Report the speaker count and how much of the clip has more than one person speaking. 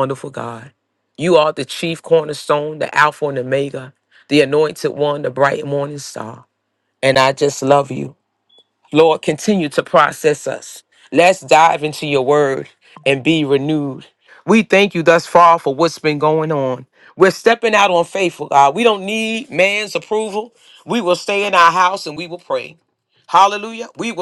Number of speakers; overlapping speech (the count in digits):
1, no overlap